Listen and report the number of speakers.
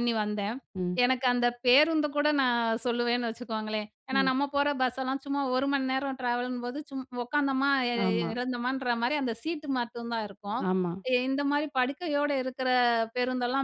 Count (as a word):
two